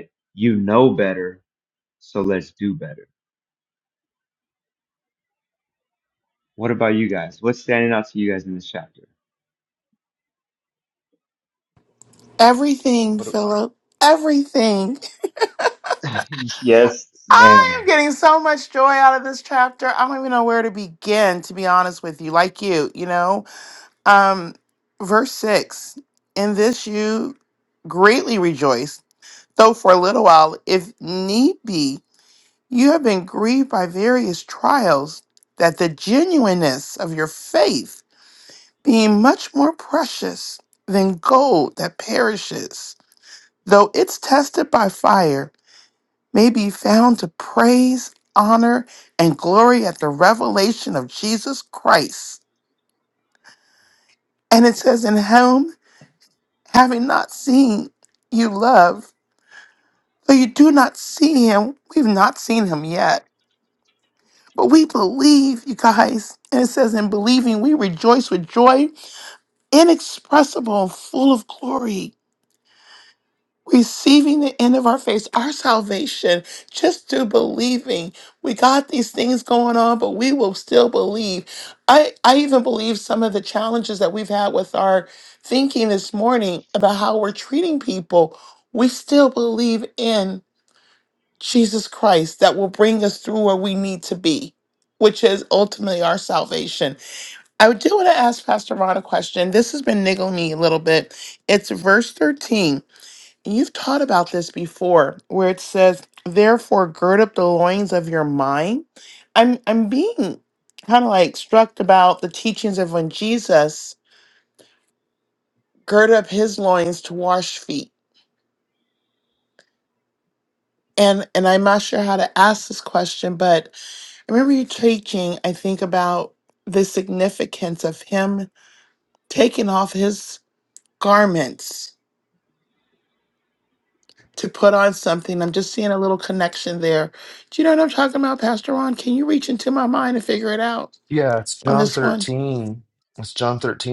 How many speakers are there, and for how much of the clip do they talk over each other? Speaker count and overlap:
three, about 1%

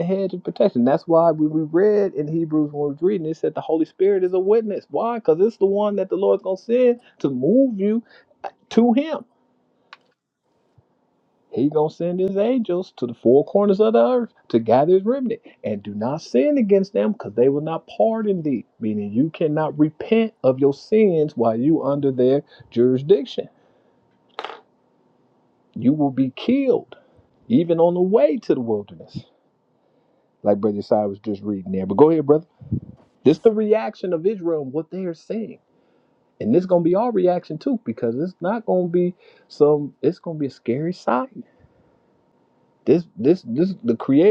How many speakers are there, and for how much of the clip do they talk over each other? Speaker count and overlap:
one, no overlap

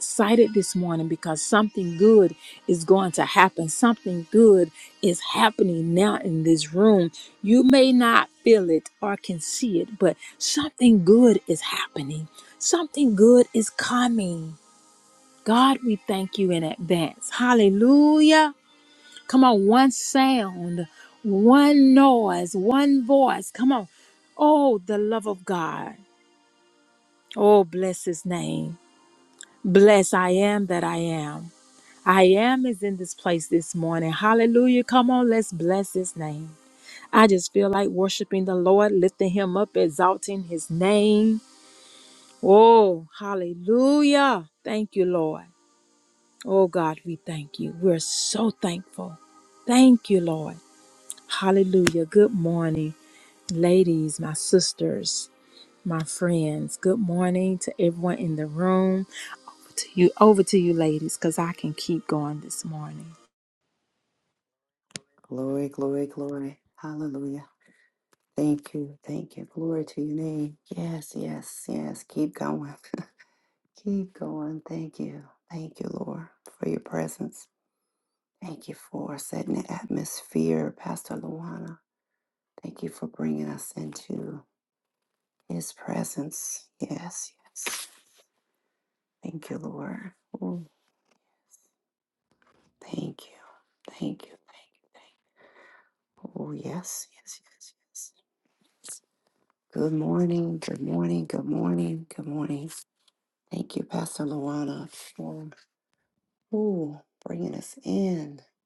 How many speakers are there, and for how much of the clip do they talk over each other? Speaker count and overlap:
two, no overlap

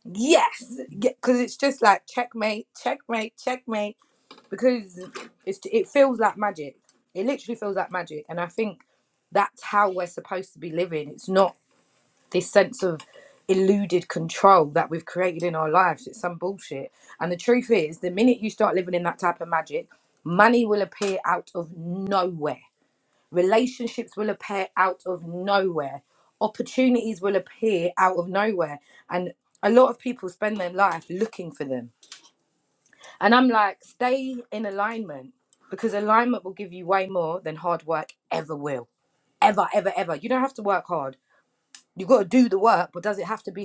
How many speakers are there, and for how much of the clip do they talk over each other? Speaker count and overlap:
one, no overlap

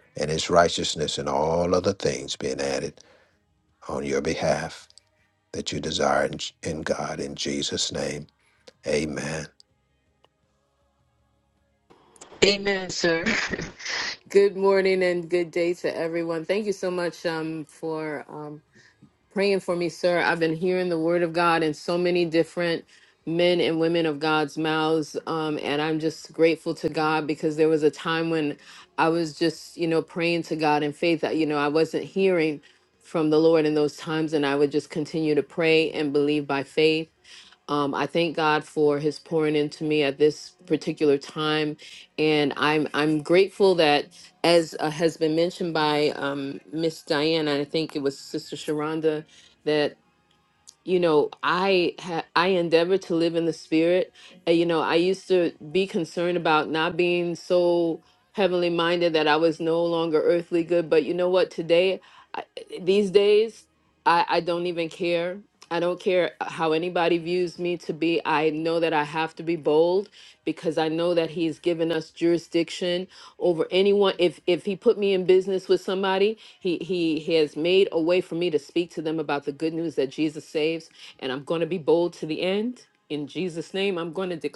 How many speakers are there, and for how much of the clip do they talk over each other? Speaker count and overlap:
two, no overlap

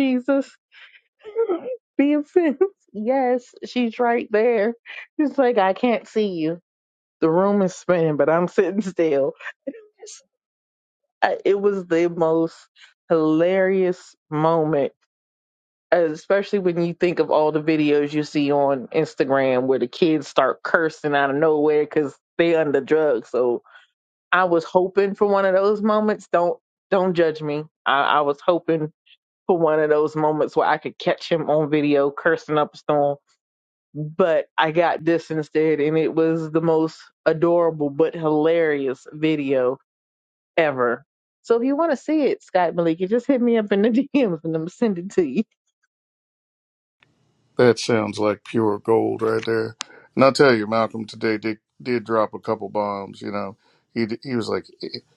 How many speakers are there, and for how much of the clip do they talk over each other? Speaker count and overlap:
two, no overlap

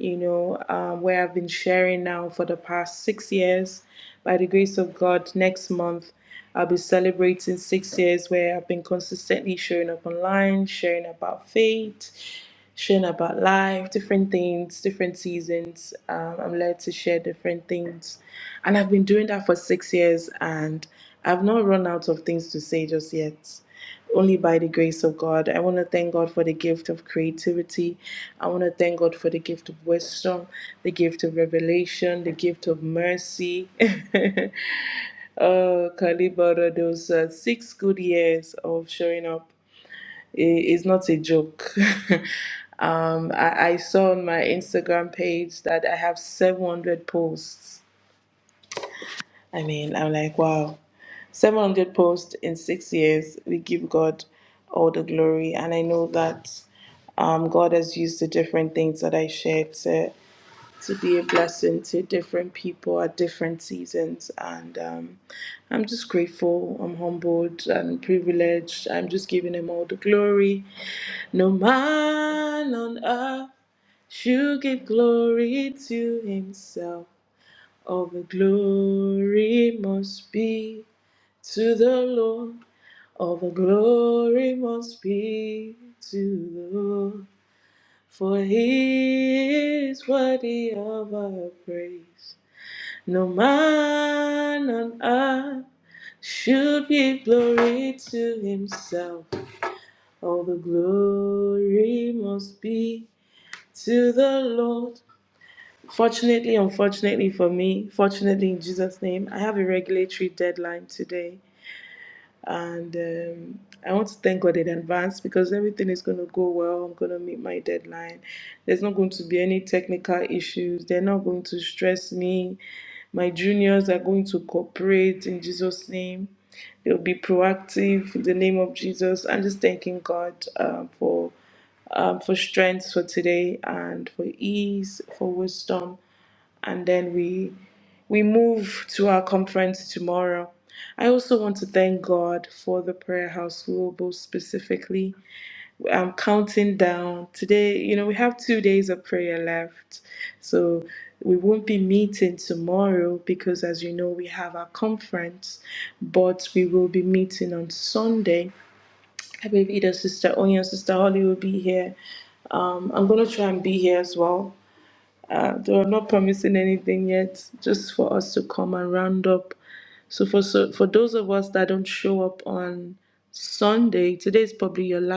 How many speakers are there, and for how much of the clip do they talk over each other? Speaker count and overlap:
one, no overlap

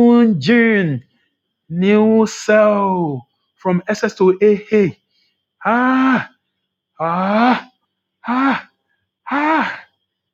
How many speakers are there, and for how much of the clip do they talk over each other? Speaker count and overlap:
one, no overlap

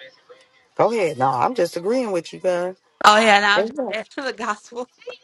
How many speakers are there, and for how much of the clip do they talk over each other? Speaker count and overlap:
two, about 4%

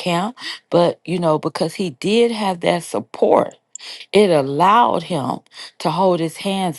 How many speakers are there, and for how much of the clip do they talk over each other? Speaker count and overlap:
one, no overlap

